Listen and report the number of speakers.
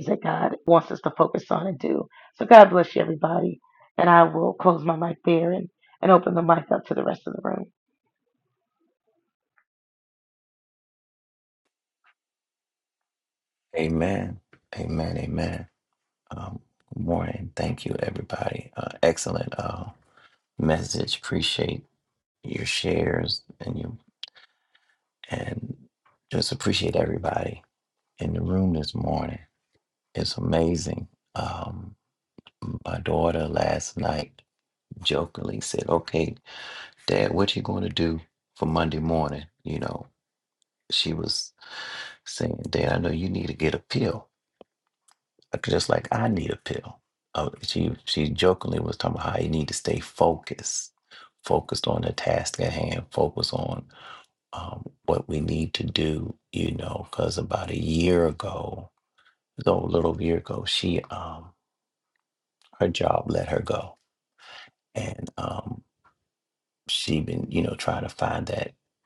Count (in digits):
2